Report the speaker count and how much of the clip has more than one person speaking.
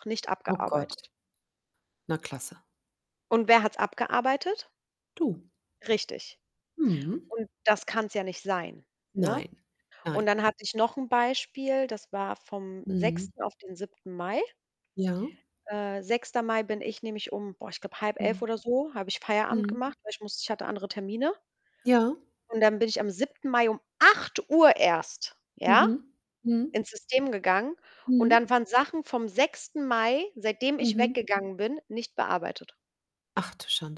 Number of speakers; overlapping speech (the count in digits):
2, about 7%